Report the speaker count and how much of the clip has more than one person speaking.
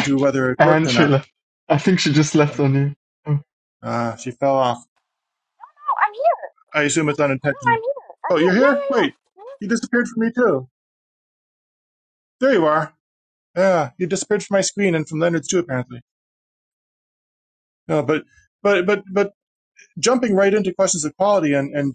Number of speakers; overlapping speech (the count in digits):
3, about 7%